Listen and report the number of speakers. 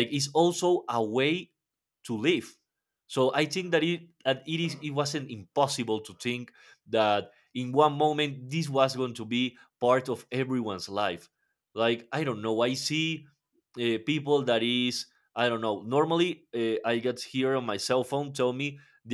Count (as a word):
one